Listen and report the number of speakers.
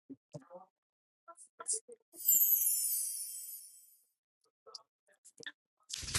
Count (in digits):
0